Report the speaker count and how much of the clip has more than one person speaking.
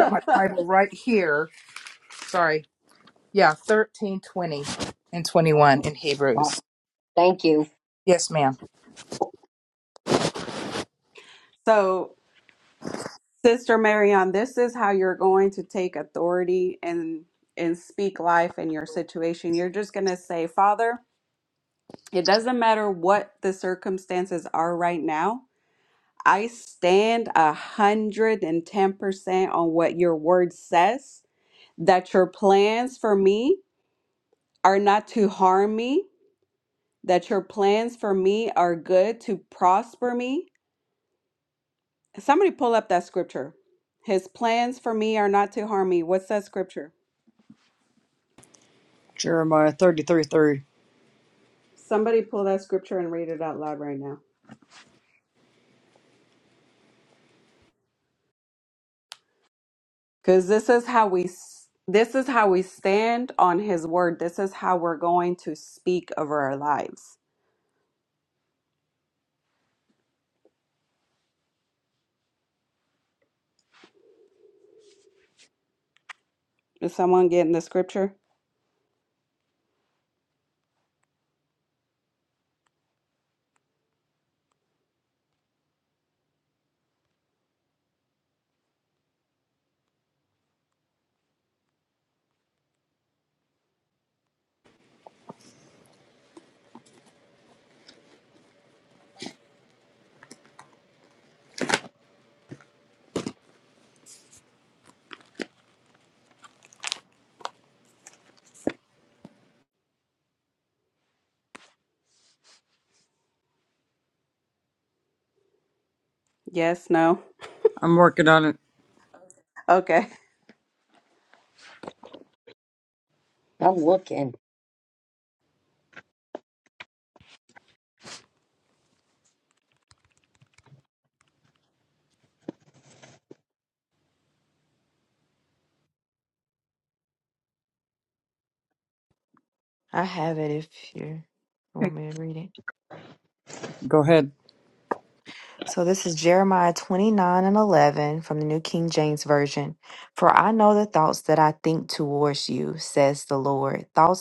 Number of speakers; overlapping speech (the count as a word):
five, no overlap